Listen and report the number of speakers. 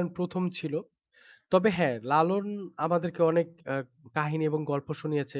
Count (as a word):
one